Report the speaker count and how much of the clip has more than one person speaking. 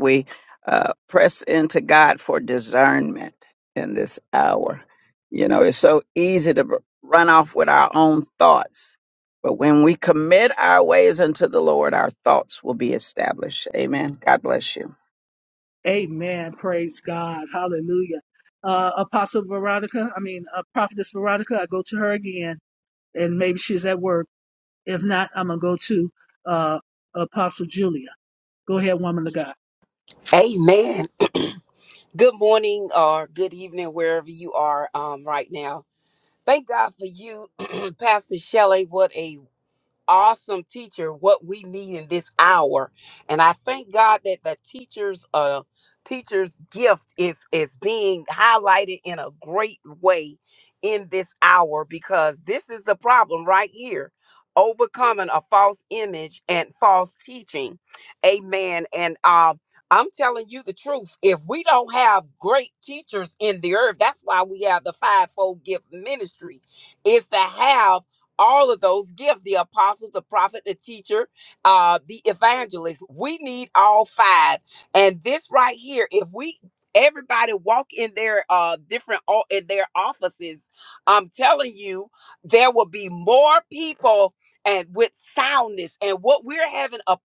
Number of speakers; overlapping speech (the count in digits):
3, no overlap